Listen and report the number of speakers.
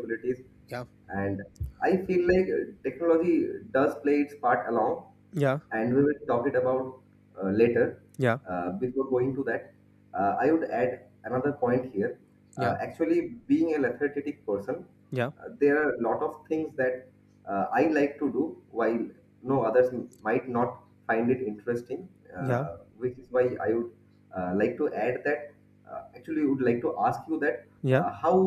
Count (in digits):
2